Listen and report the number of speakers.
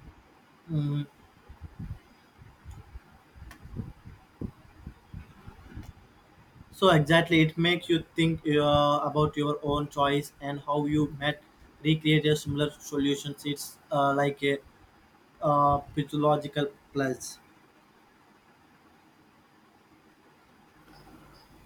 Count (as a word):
one